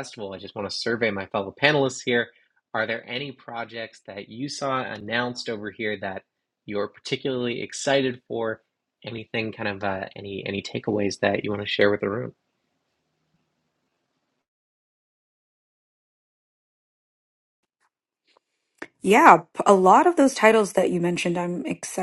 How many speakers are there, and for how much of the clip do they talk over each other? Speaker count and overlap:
2, no overlap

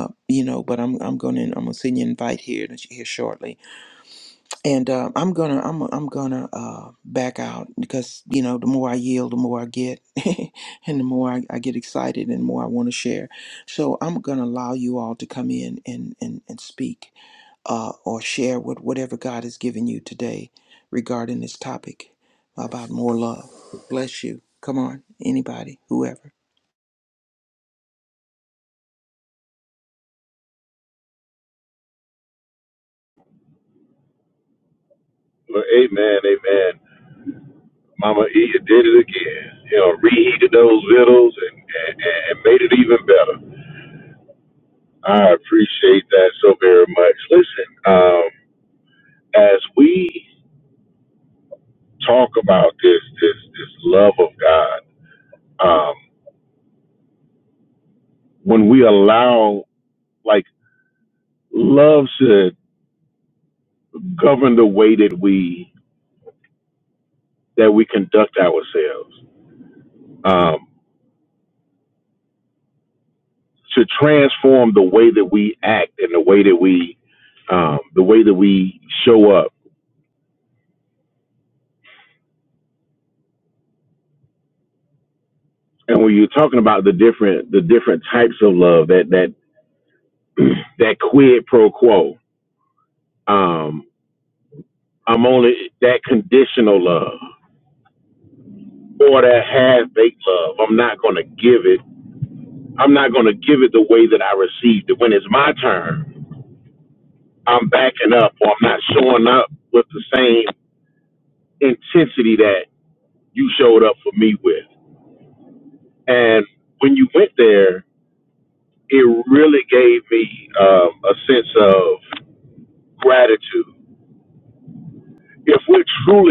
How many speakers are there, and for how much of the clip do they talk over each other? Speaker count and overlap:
2, no overlap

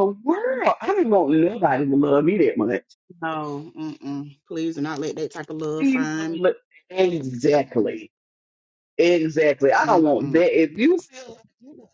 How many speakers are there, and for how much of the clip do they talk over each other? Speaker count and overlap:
2, about 6%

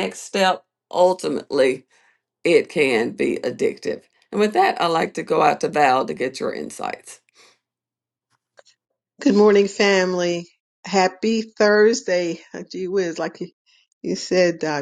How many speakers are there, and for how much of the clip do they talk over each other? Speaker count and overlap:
2, no overlap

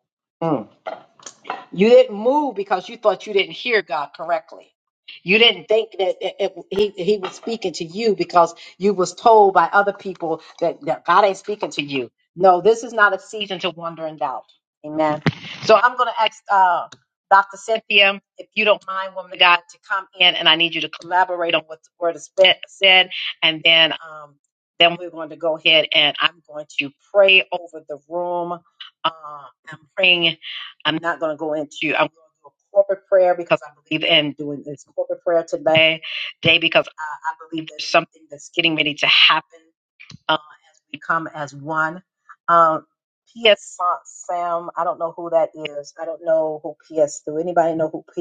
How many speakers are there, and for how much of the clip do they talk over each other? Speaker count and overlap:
1, no overlap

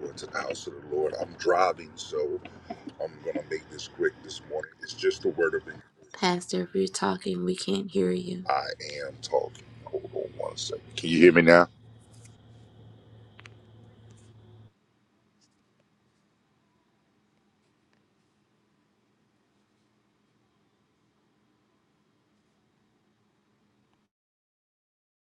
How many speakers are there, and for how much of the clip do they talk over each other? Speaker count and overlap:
2, no overlap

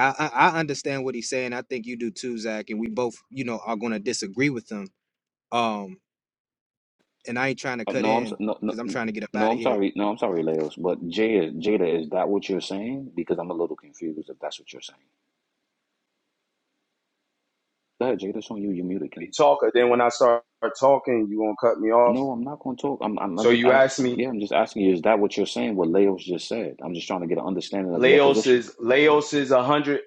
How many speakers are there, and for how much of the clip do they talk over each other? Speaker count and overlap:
3, about 9%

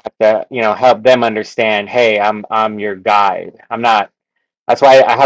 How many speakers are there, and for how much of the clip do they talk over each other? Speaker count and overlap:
1, no overlap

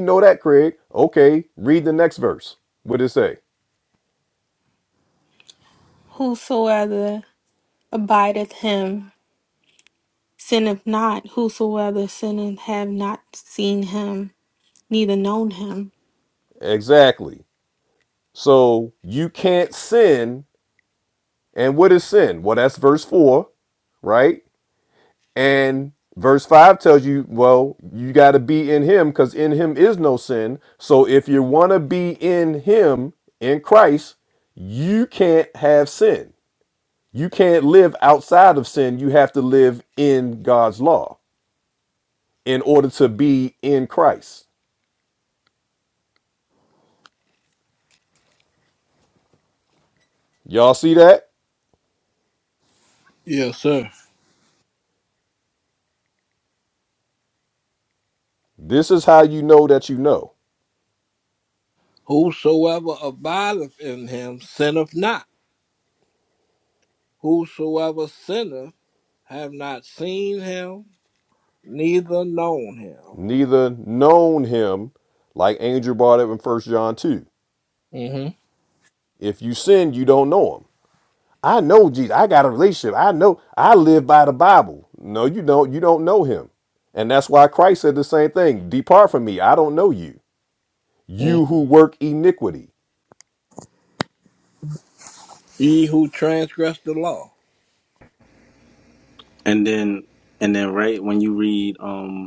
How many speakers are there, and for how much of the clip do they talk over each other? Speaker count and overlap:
4, under 1%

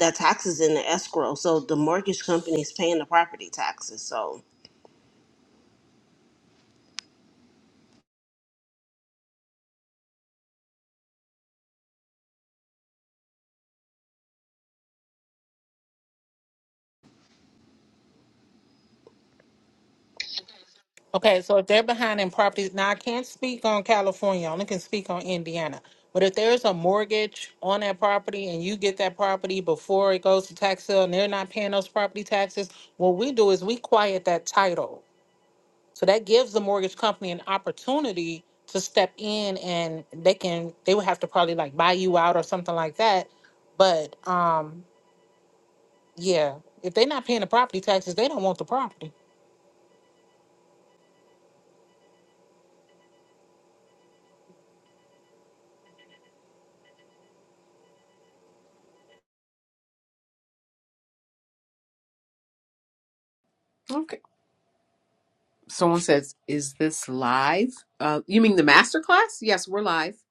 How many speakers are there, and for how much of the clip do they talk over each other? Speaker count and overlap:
3, no overlap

